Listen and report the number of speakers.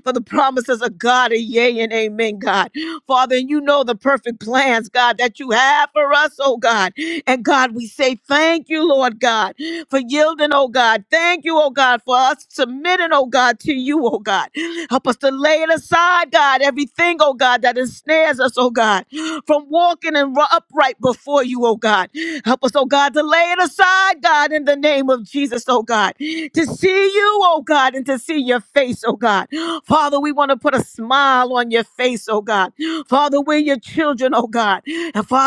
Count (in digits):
1